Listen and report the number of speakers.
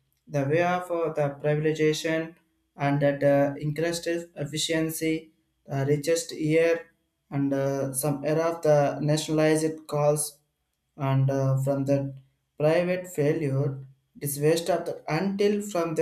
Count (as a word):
one